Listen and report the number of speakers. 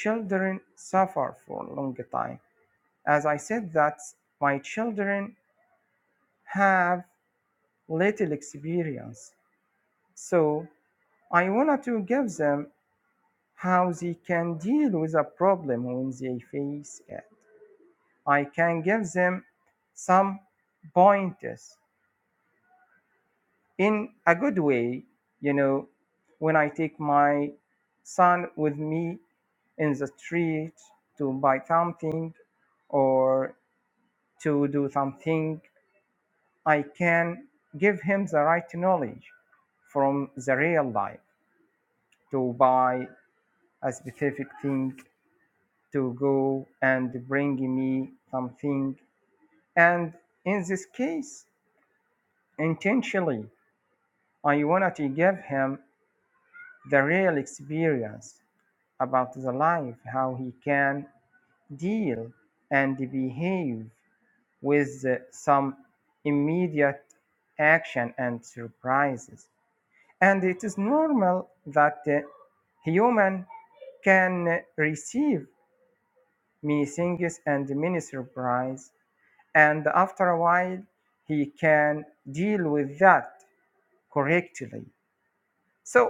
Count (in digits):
1